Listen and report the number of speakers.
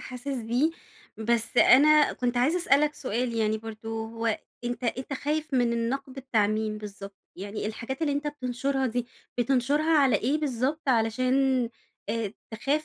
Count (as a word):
one